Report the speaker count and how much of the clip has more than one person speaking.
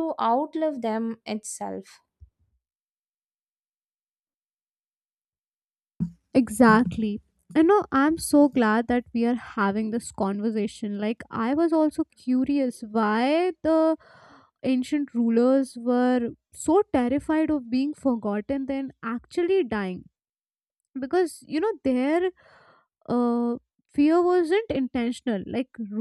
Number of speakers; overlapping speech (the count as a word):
two, no overlap